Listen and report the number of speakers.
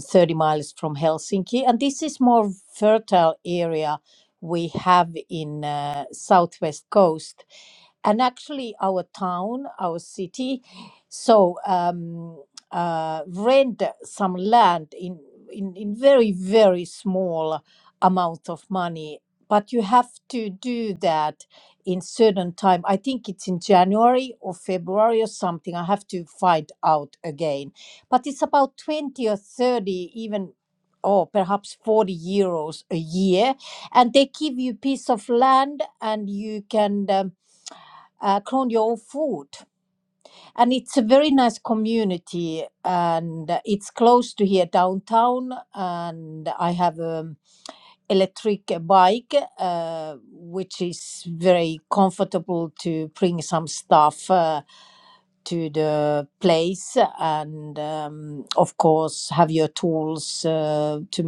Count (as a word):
one